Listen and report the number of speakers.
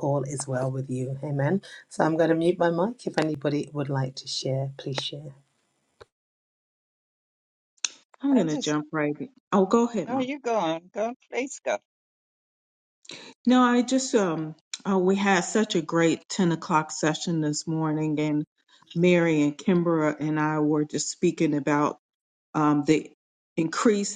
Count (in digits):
3